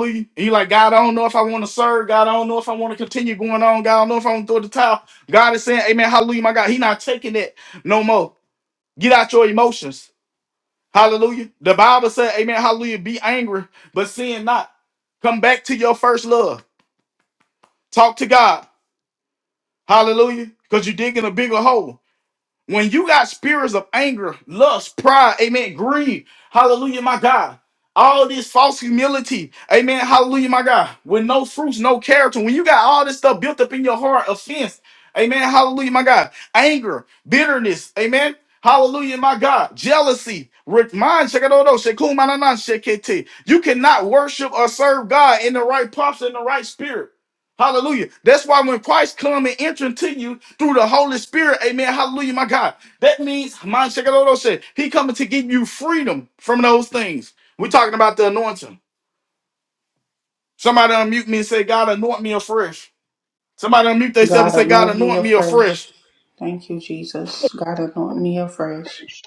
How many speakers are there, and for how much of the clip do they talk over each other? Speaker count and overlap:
two, about 2%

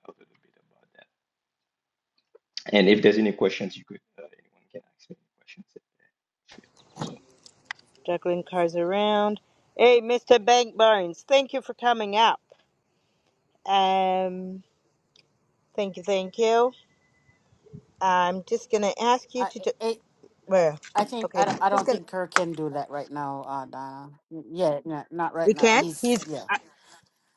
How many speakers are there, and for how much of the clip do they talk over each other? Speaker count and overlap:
three, about 5%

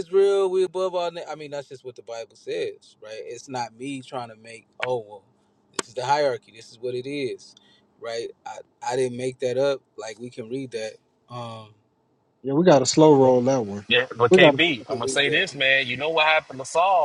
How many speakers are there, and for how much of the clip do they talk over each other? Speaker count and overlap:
three, about 5%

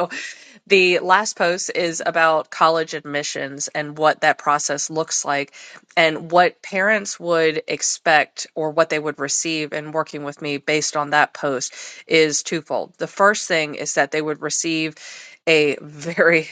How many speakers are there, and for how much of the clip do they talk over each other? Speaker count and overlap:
one, no overlap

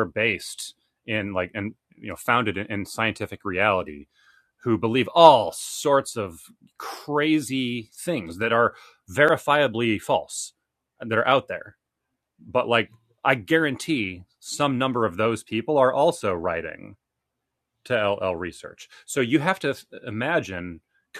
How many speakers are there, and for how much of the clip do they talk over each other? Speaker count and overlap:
one, no overlap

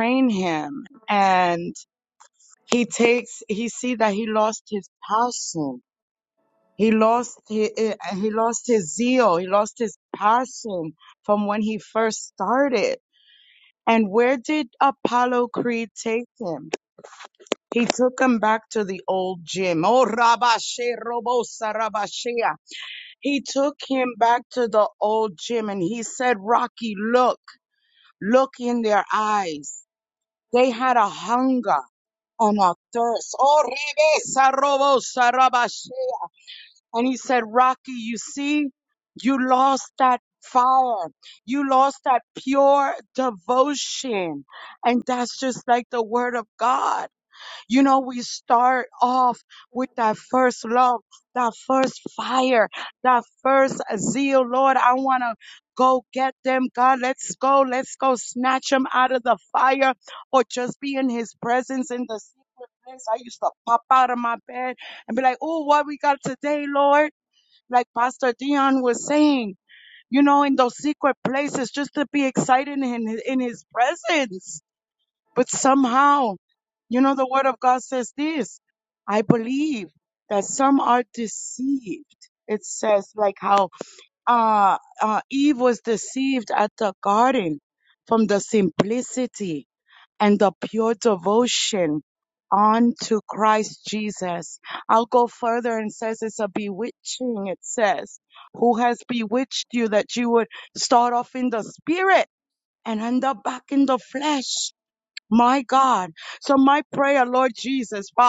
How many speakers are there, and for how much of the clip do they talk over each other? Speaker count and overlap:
one, no overlap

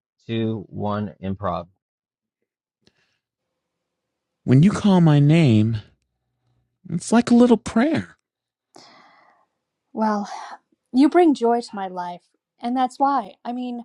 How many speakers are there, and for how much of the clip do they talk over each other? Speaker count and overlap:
three, no overlap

